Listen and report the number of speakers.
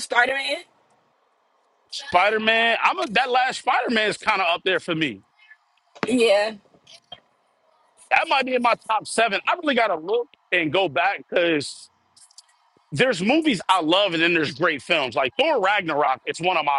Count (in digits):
2